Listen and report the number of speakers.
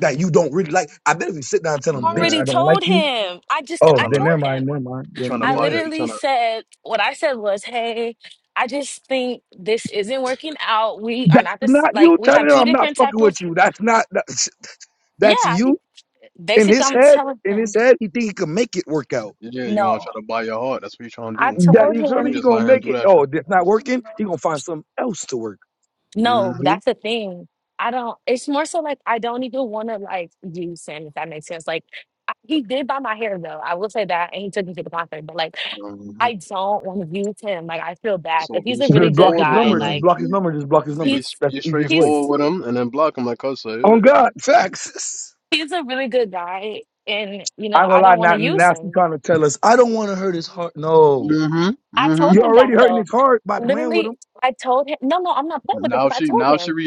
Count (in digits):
3